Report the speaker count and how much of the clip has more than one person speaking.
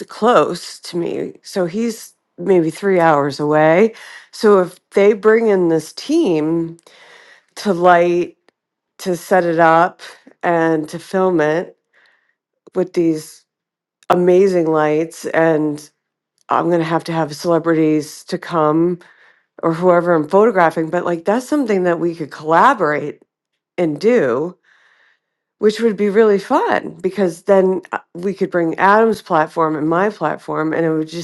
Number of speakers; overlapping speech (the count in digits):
1, no overlap